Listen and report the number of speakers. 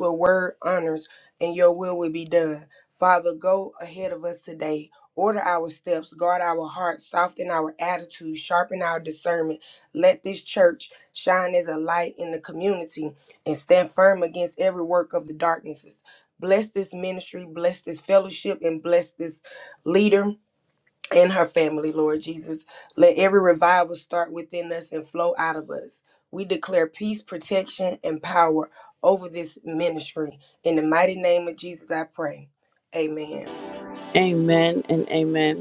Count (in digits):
2